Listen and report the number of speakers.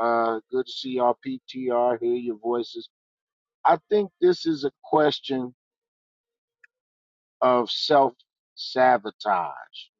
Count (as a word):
one